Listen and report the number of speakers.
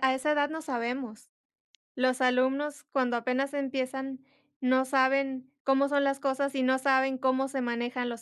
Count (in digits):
1